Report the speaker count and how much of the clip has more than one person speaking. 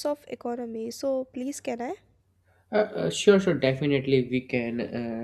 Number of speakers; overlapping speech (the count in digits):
2, no overlap